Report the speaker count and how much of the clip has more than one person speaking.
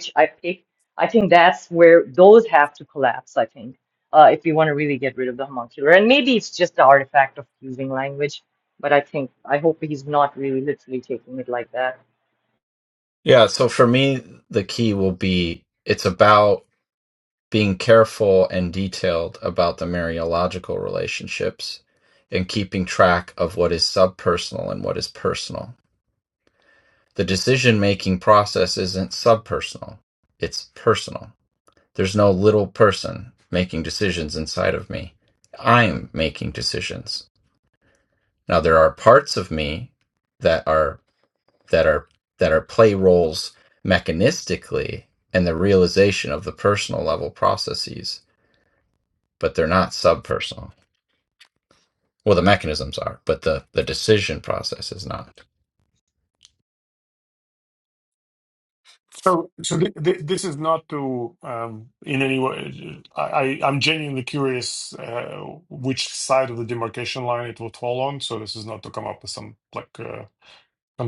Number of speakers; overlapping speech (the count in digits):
3, no overlap